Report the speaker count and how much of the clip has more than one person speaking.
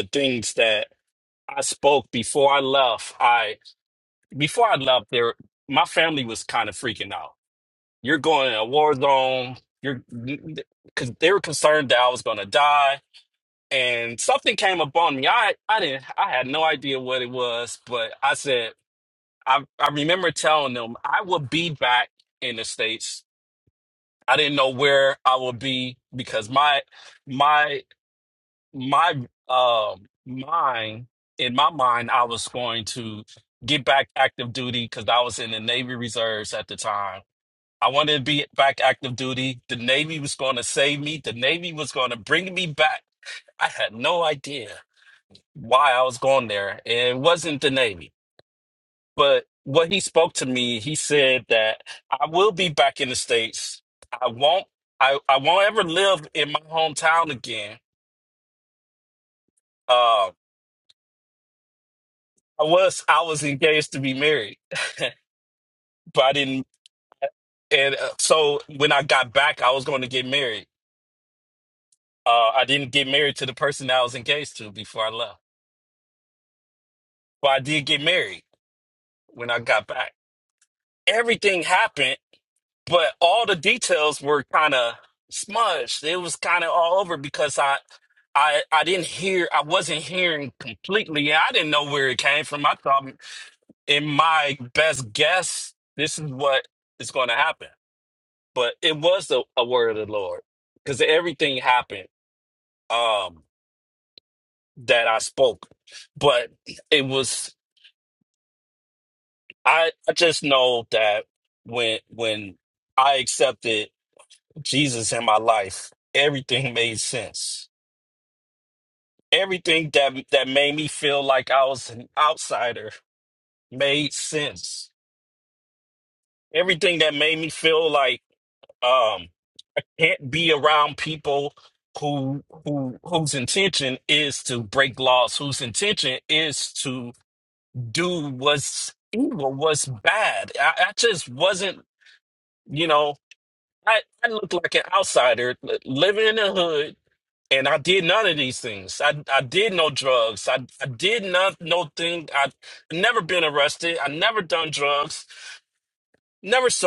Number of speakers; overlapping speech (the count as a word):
one, no overlap